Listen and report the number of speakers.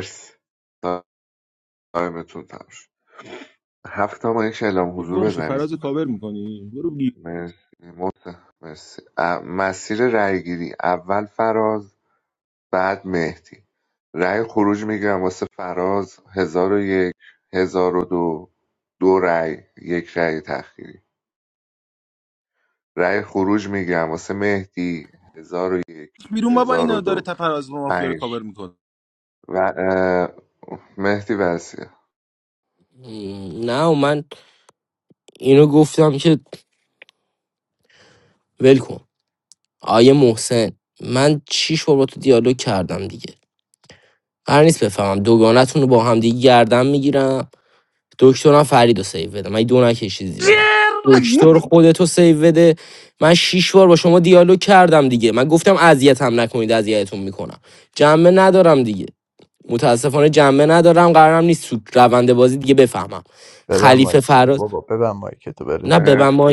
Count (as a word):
four